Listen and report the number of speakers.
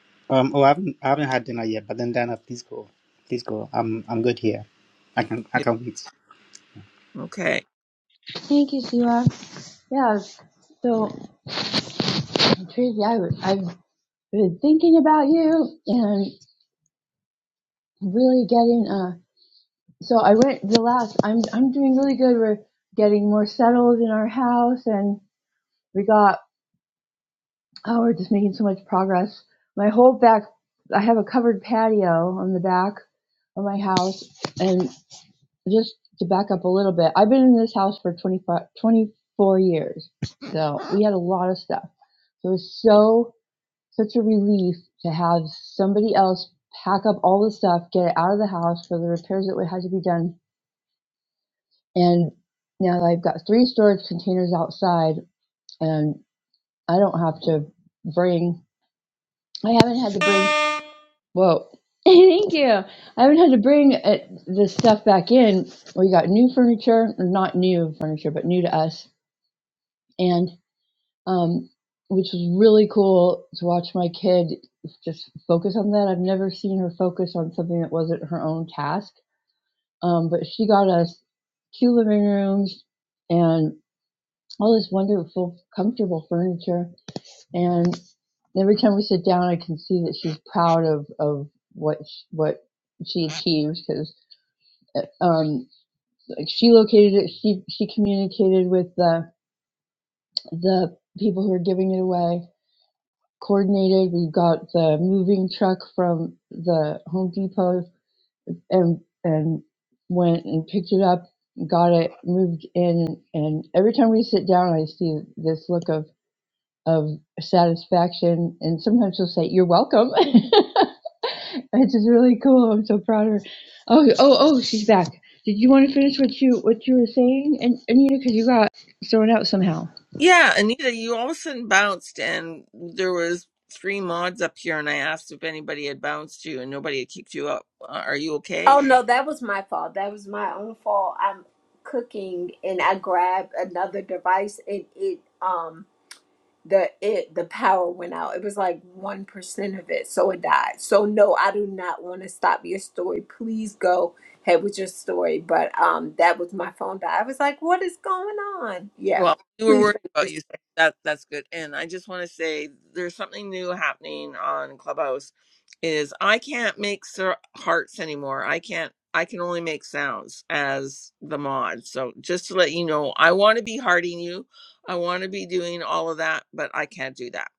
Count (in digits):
4